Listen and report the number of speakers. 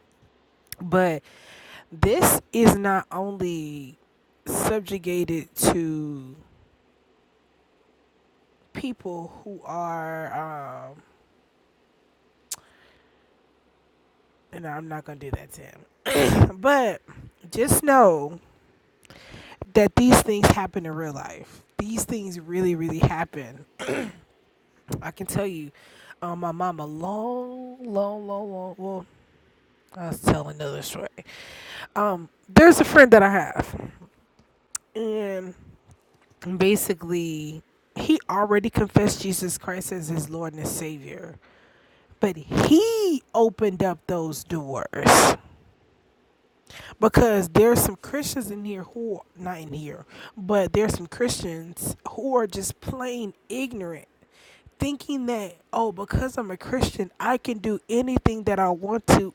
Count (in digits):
1